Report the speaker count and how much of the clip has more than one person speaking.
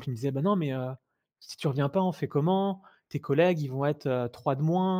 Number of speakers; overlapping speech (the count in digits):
1, no overlap